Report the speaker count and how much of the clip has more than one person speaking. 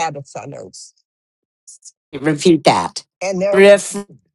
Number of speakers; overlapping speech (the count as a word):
two, about 3%